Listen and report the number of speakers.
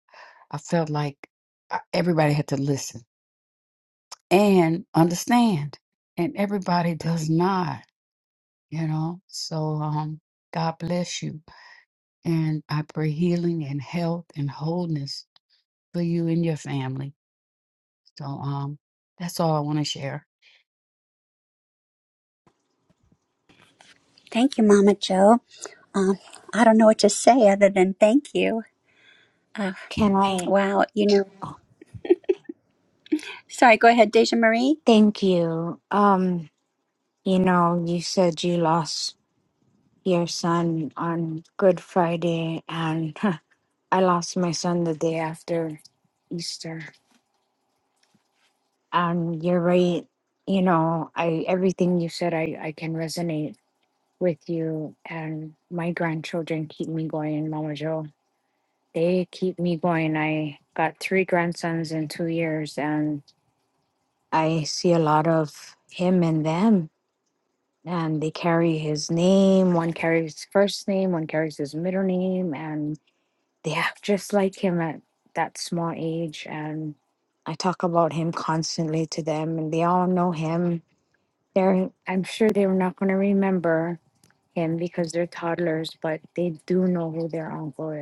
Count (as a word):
three